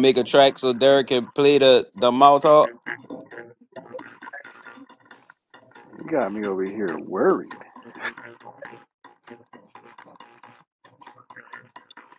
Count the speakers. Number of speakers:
2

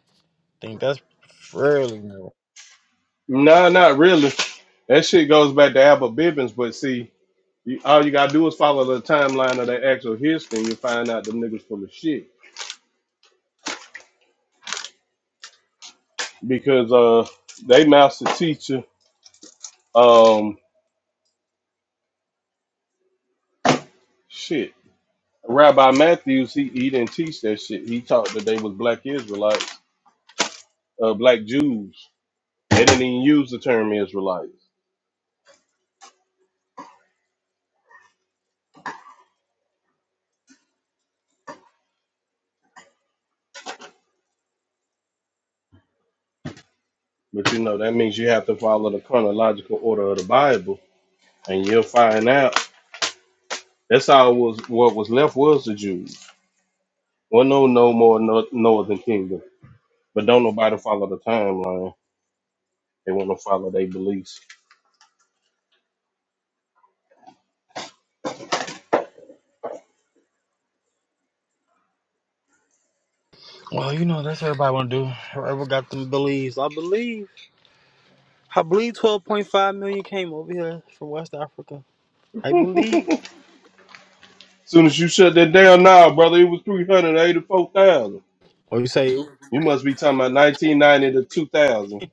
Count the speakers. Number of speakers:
2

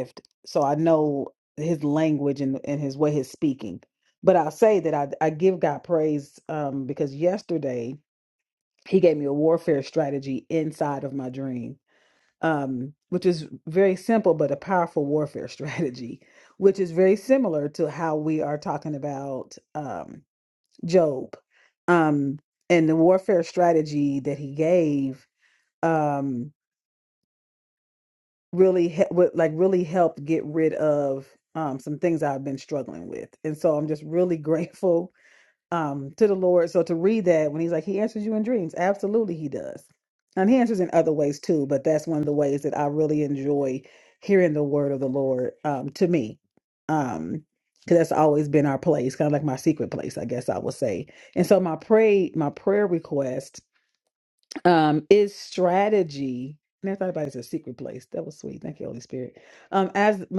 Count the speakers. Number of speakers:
1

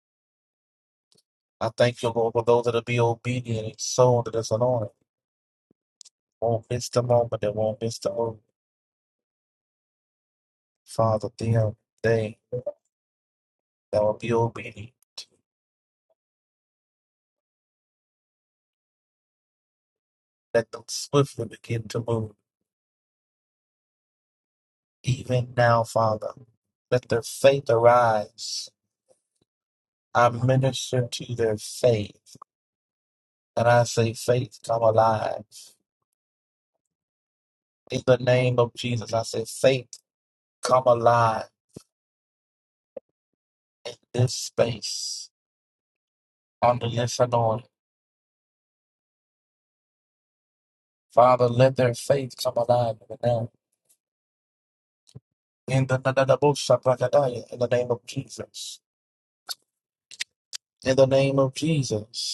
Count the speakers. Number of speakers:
1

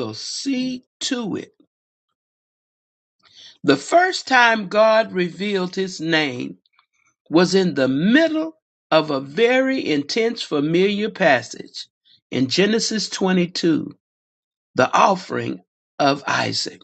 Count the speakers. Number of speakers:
1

